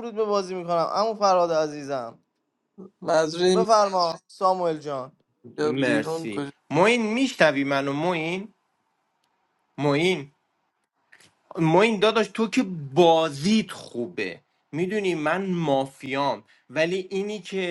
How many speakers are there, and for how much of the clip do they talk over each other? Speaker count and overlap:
3, about 5%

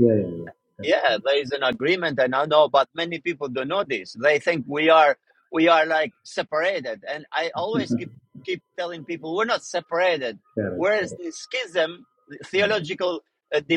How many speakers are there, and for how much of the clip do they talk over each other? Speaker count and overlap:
2, about 7%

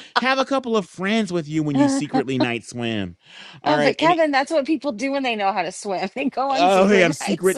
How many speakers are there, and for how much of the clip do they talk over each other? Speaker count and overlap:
2, about 25%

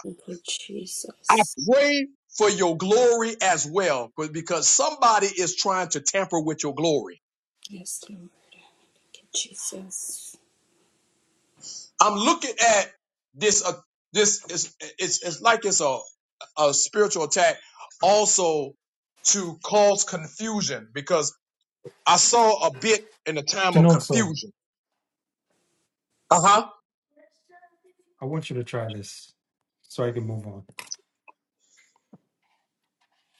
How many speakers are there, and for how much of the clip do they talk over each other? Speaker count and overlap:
3, about 2%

